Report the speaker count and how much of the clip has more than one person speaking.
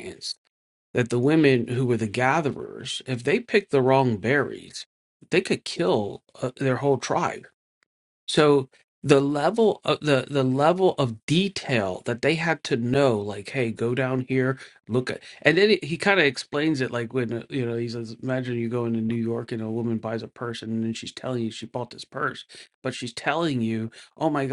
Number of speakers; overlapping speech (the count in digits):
1, no overlap